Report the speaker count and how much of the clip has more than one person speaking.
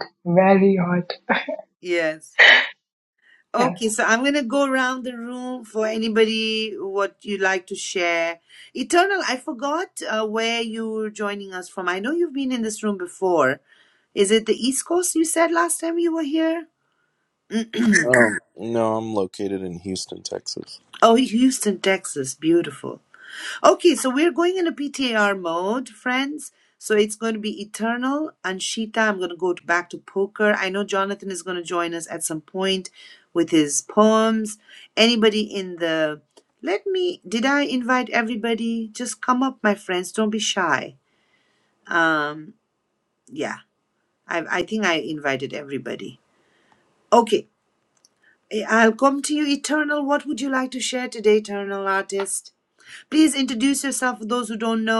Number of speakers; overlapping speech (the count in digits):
3, under 1%